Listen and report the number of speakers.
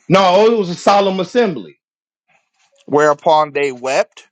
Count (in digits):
2